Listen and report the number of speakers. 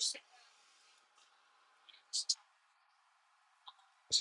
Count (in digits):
0